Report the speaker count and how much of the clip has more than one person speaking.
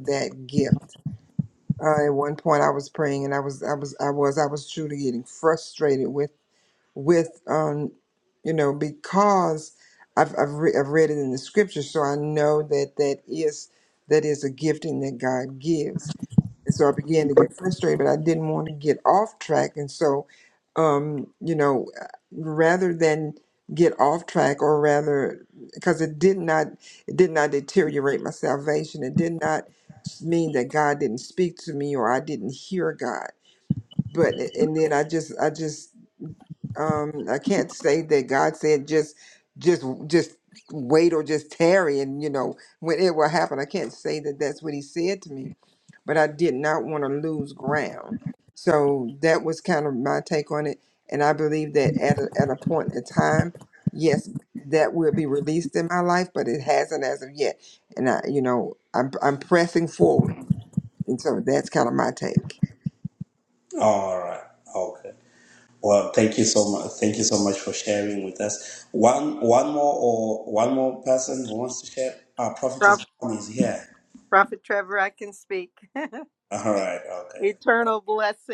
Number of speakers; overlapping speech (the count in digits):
3, under 1%